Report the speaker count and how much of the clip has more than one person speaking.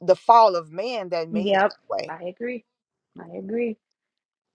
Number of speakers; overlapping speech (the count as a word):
two, about 8%